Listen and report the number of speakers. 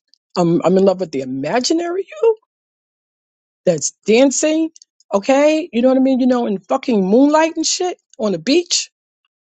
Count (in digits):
1